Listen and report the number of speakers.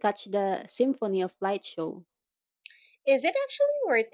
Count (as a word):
two